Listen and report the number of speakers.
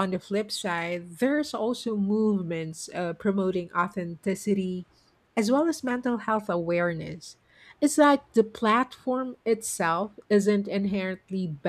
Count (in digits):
1